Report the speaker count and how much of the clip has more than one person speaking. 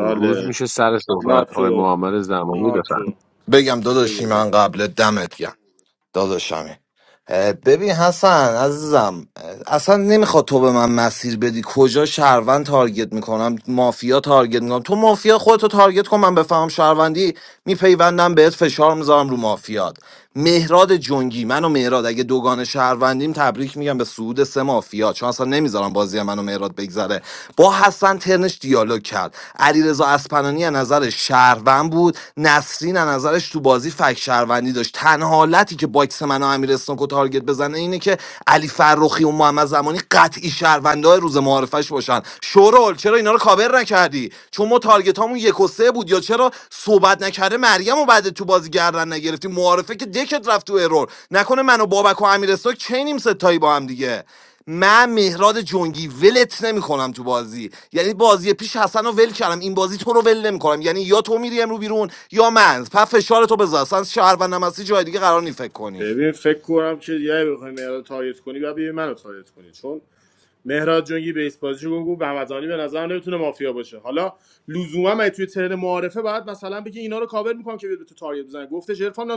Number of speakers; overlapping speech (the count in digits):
3, about 2%